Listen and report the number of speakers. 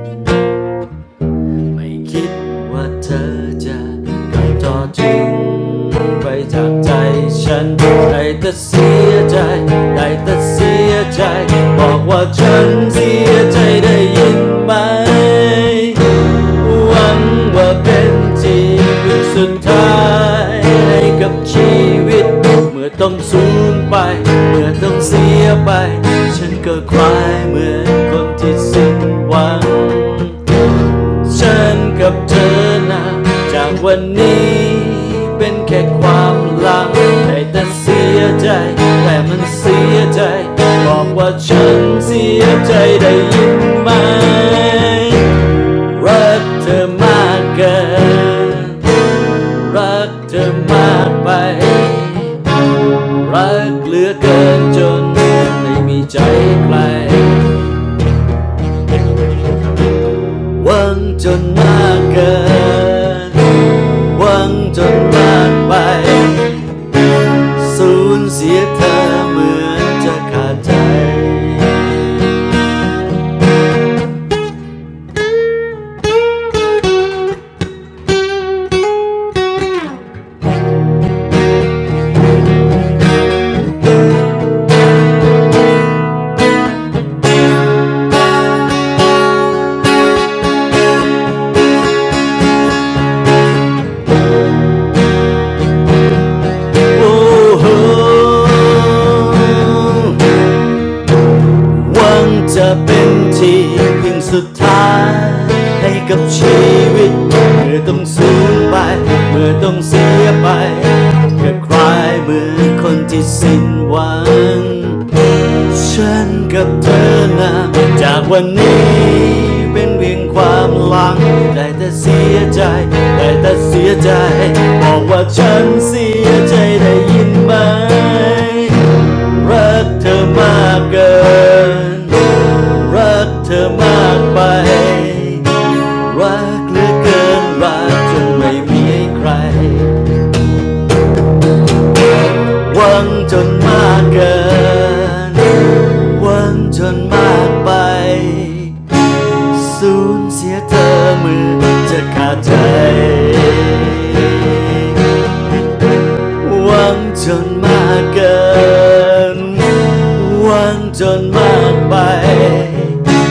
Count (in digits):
1